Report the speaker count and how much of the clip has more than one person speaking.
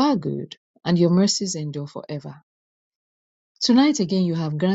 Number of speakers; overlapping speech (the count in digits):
1, no overlap